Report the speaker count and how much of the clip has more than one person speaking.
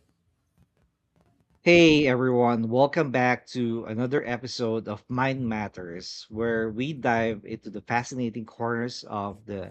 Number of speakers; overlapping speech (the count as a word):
one, no overlap